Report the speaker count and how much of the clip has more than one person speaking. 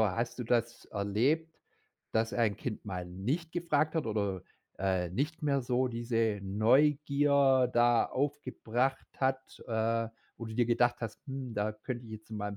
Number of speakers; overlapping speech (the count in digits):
1, no overlap